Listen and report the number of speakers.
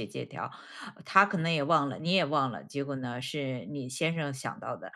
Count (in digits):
1